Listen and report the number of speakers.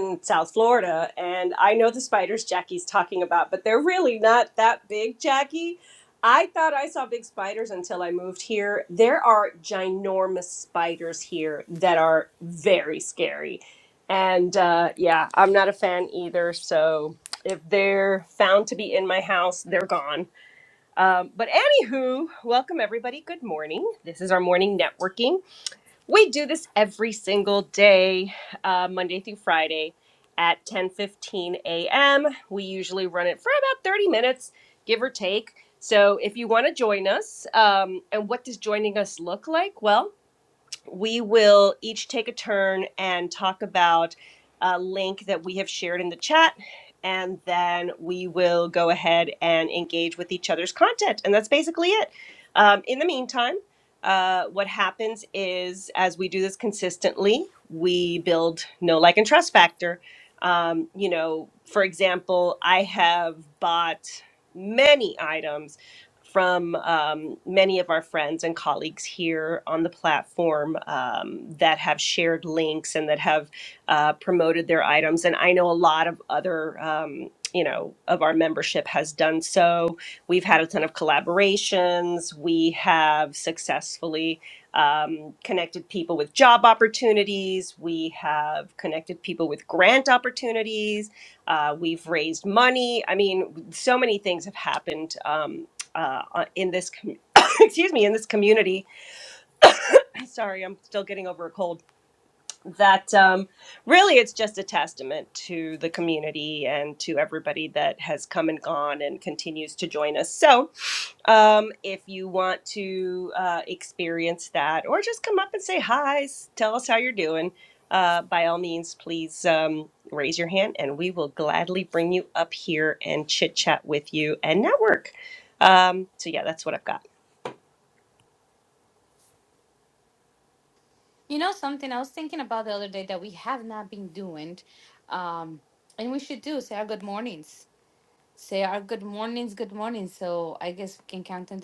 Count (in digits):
2